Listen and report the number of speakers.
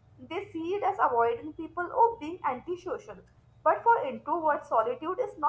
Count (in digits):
1